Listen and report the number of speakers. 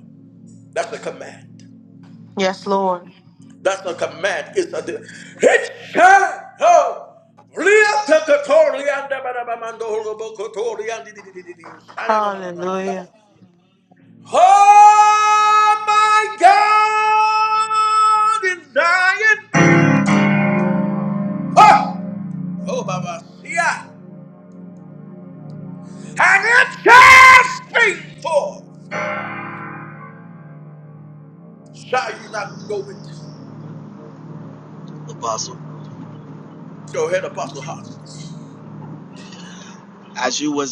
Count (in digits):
3